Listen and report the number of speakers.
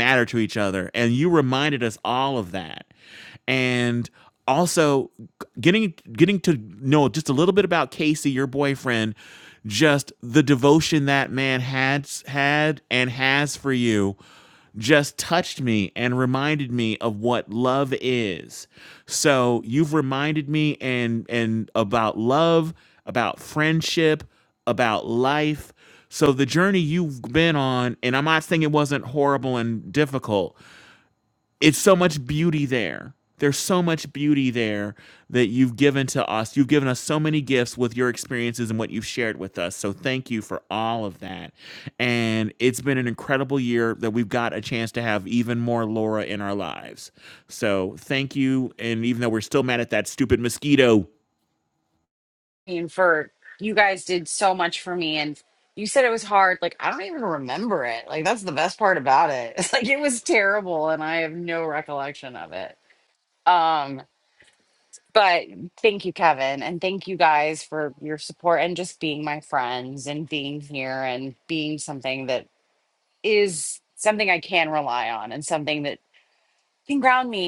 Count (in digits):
2